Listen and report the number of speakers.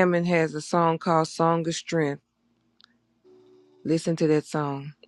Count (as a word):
one